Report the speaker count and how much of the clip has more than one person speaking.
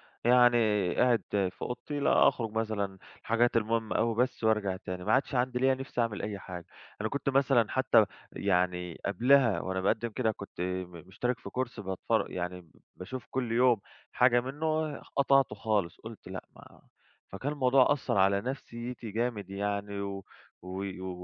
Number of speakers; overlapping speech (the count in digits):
1, no overlap